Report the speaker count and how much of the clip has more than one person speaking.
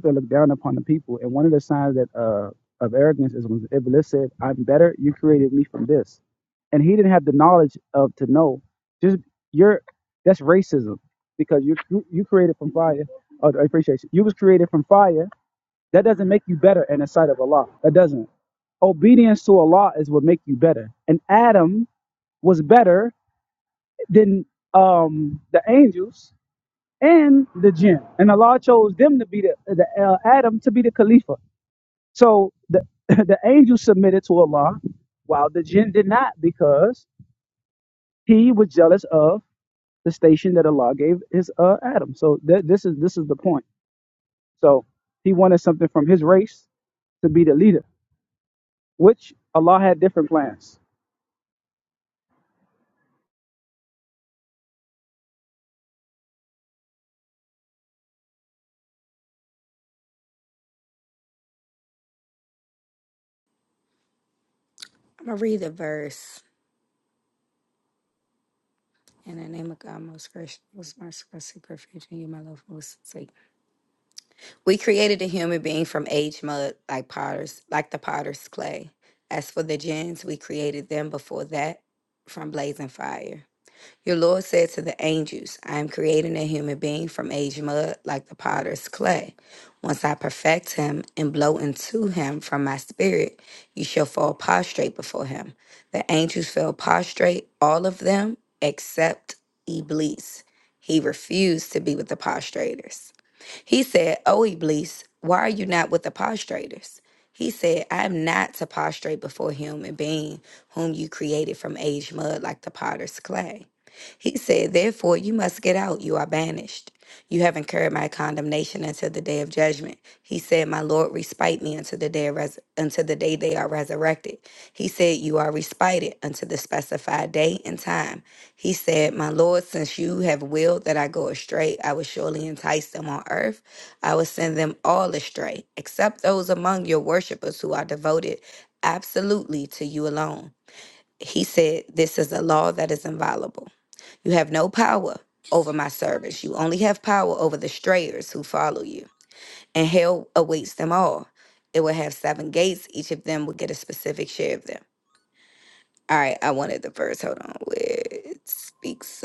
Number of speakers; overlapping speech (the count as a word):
two, no overlap